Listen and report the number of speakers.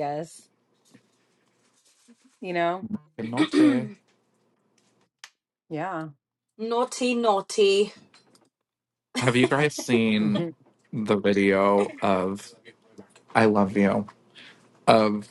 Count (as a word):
three